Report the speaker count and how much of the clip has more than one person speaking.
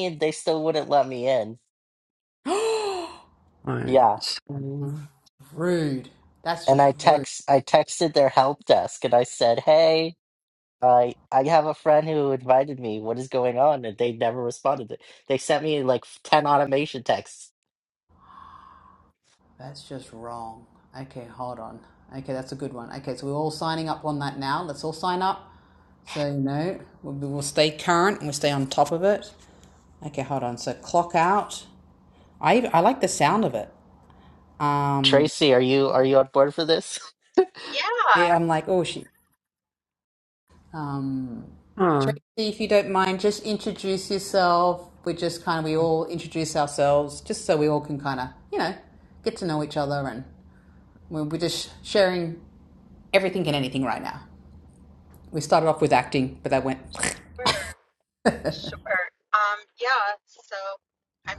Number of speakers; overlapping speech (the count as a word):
four, about 2%